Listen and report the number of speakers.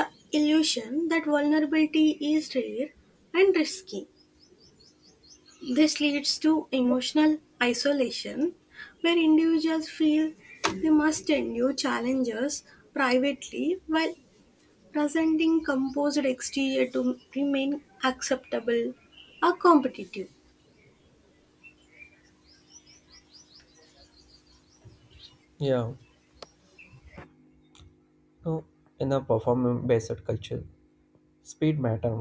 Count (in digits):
2